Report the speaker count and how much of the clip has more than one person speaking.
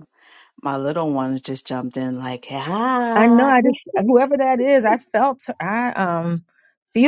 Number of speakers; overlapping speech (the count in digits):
2, about 5%